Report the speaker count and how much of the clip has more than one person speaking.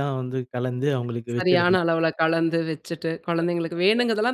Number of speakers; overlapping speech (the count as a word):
two, about 10%